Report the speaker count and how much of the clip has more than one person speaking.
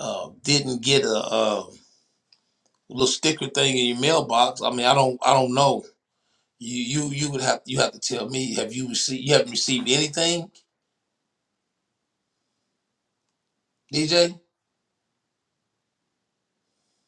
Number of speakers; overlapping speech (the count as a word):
one, no overlap